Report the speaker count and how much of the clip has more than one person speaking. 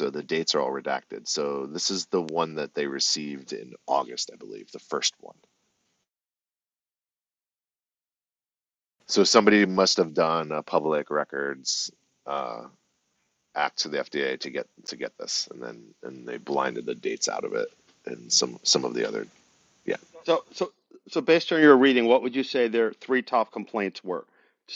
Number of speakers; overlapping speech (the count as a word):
two, no overlap